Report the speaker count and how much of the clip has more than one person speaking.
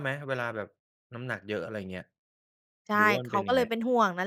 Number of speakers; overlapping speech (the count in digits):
2, about 17%